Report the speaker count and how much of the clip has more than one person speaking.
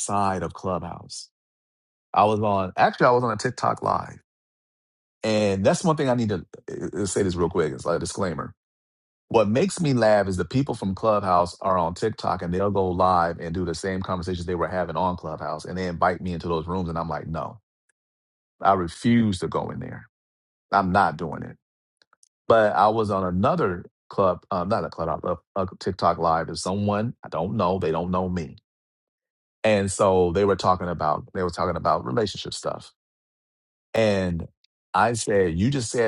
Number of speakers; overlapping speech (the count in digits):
1, no overlap